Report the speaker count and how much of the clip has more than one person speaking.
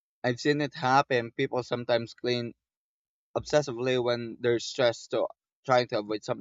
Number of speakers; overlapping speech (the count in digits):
1, no overlap